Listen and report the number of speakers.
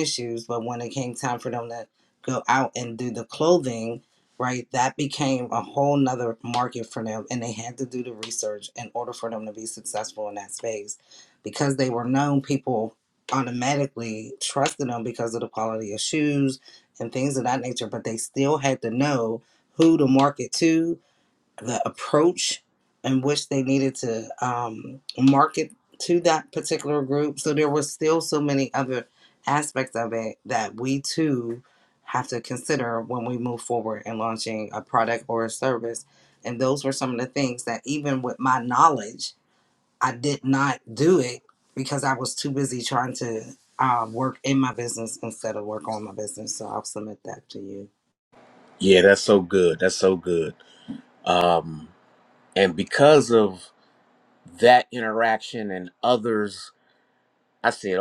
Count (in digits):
2